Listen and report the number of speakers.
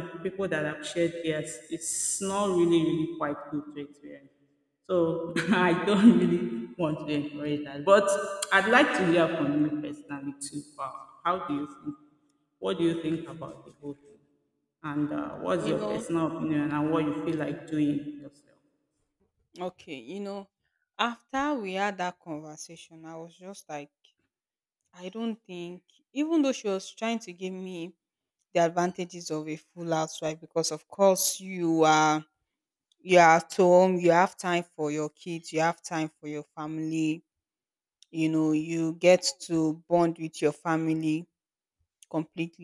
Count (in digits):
2